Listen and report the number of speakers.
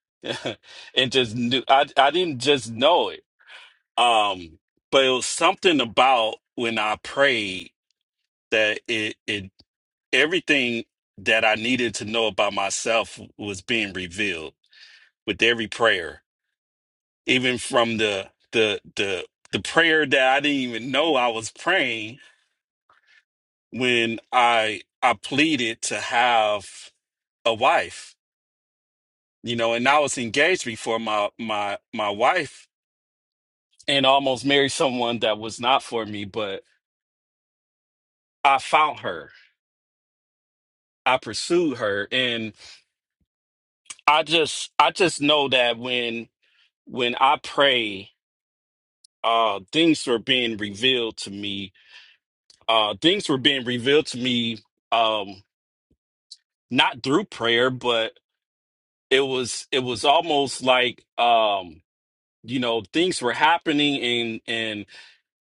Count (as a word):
one